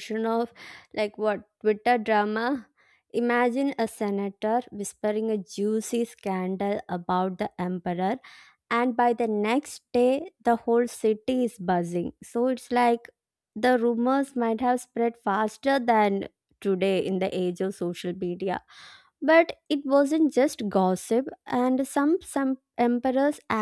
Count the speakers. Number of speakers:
1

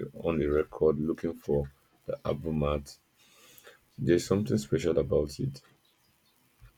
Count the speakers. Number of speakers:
1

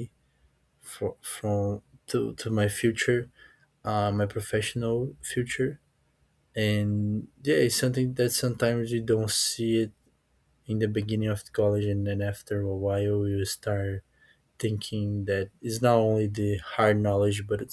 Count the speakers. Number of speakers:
1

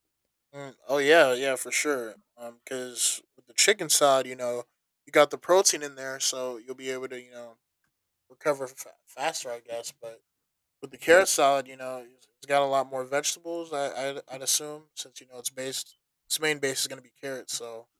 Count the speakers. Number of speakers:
1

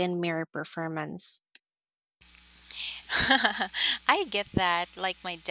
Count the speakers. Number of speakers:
2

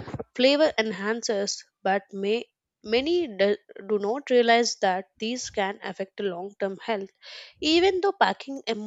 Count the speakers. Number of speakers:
1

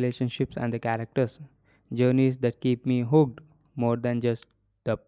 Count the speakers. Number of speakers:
1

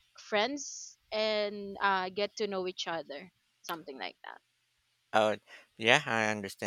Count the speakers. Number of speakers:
2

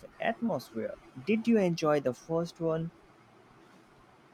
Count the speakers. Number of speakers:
1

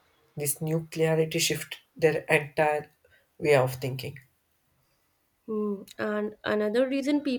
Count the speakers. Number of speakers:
2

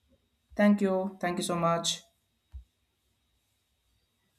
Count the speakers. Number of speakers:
1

